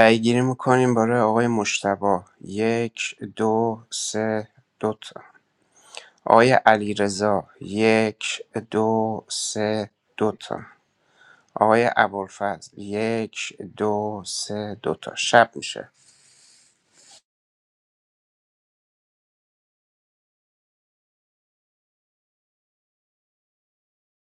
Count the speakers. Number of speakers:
1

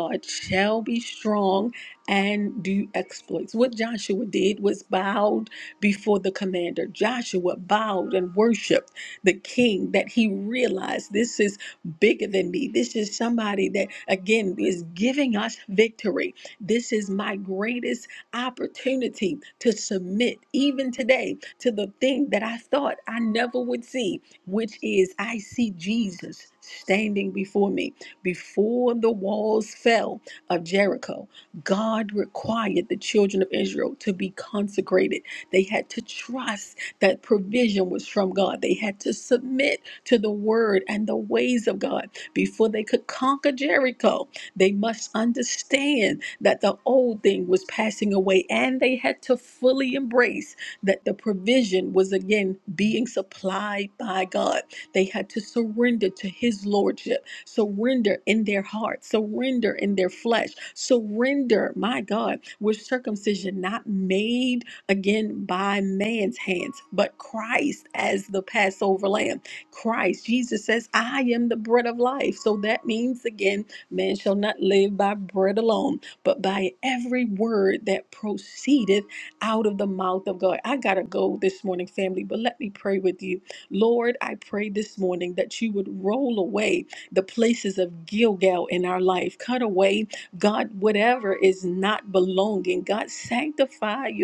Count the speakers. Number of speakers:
1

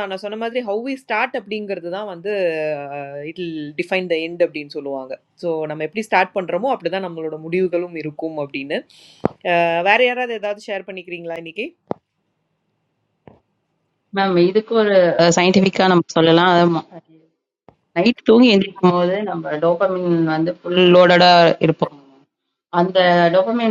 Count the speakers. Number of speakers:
2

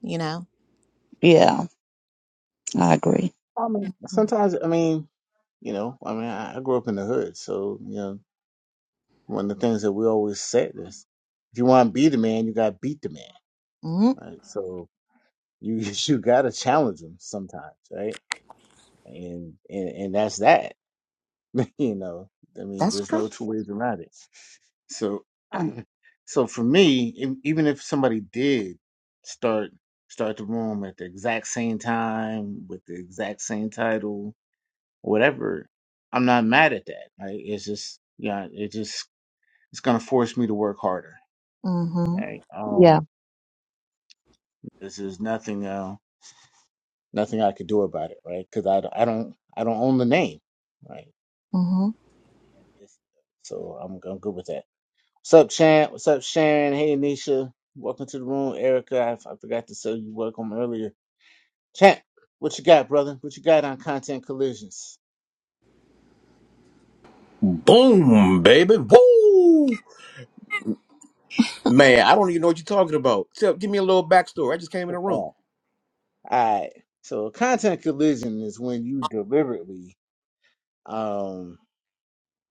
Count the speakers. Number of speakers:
4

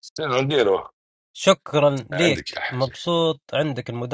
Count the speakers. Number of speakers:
2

